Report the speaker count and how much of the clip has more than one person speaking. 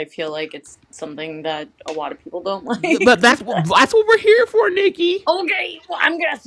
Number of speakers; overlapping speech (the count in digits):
2, about 4%